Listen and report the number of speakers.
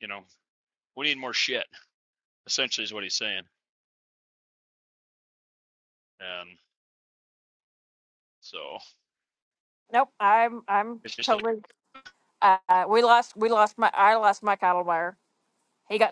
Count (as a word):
two